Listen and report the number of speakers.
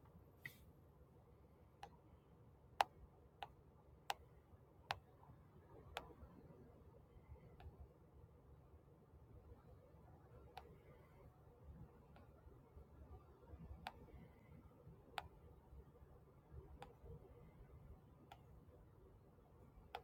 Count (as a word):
zero